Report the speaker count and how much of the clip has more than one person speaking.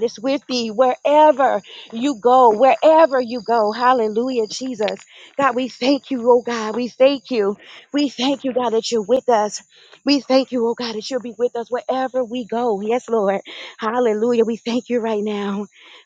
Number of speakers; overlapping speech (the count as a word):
one, no overlap